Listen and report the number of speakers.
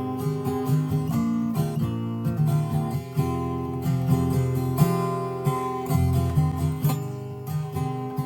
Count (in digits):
0